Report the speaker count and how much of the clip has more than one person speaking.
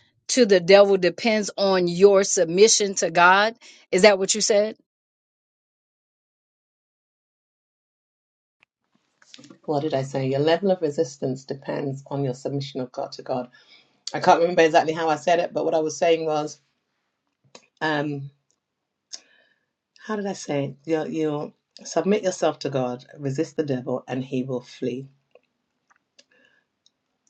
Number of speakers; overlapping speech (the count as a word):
two, no overlap